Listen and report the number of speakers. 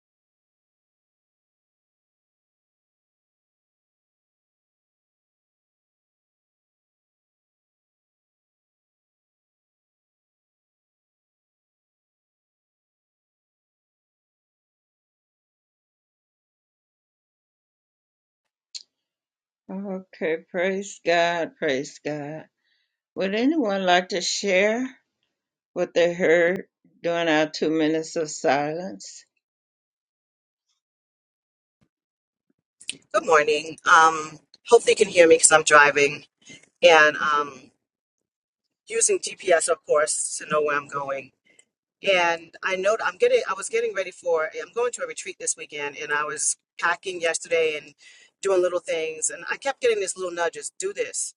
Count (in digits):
2